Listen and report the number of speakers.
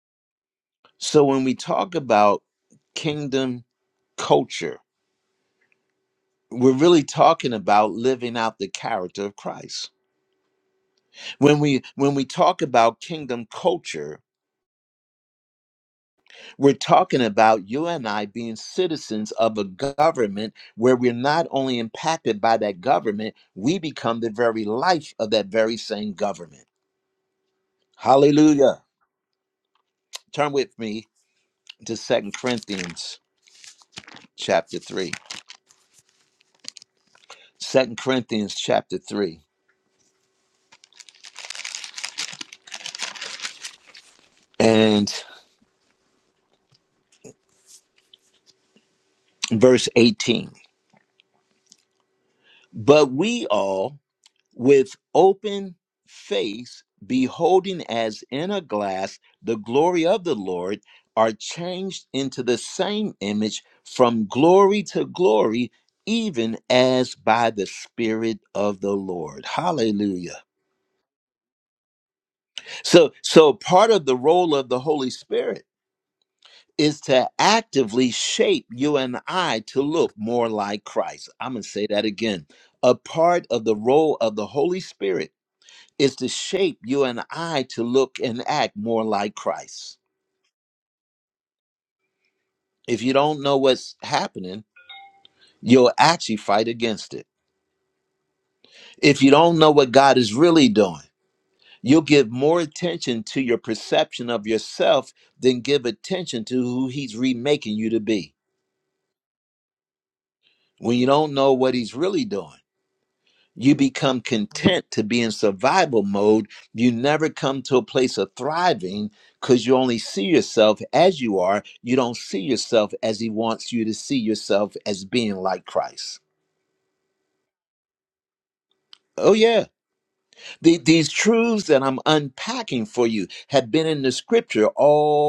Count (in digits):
1